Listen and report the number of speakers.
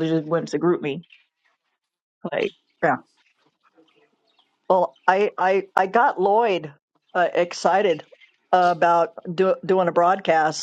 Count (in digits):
2